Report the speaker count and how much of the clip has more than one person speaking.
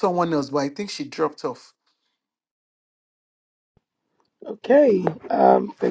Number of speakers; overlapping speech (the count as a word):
two, no overlap